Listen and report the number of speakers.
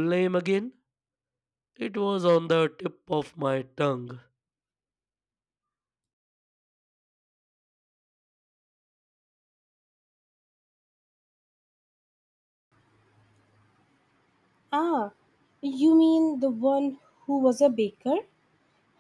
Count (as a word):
two